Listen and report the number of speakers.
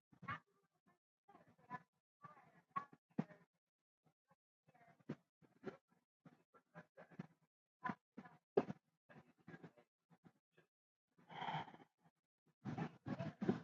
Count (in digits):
0